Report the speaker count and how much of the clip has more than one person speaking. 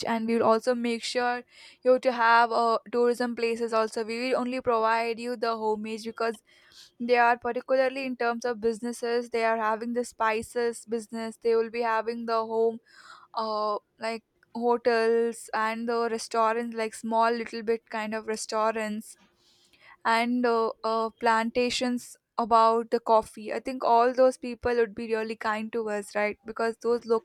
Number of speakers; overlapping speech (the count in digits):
1, no overlap